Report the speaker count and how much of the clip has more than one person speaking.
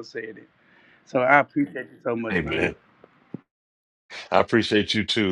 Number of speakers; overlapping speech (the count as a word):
two, about 8%